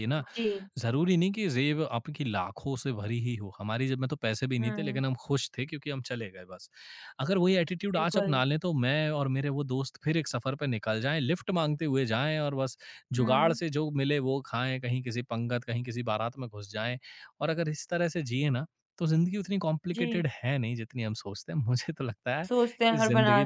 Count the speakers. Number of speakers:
two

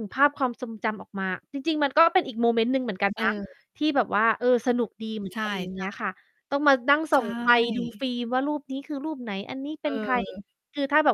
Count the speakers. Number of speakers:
two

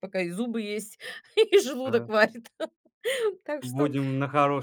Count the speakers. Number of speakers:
two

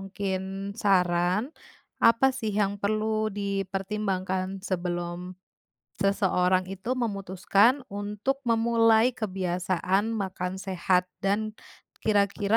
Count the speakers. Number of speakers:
one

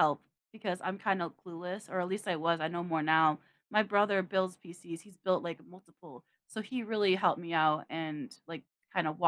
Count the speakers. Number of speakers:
one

